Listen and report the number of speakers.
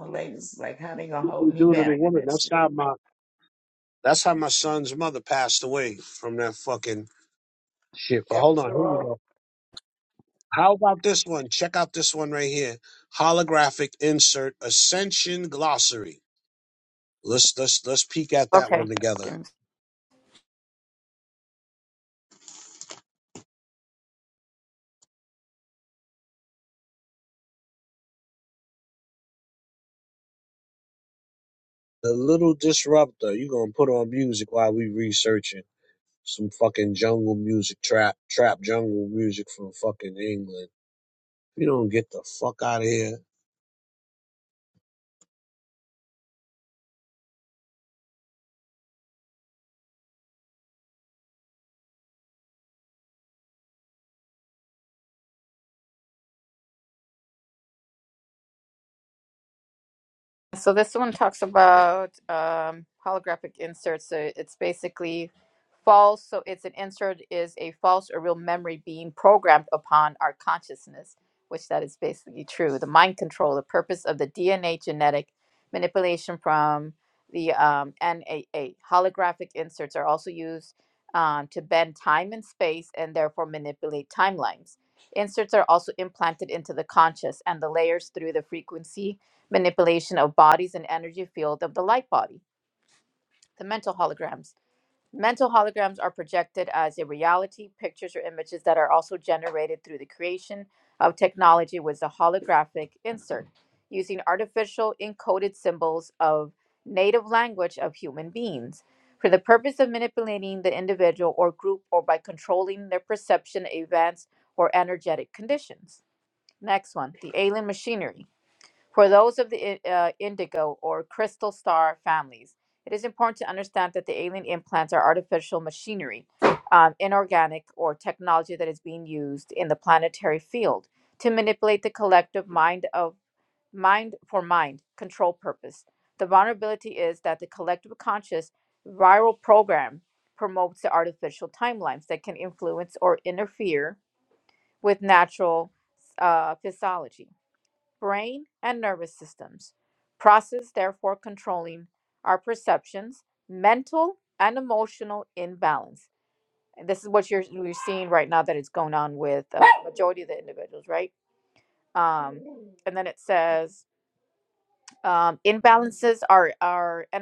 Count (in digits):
3